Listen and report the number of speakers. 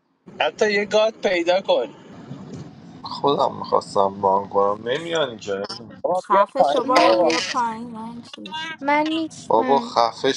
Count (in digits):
4